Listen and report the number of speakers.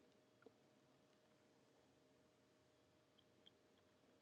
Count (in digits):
0